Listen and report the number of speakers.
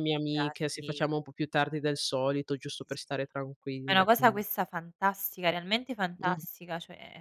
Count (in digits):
2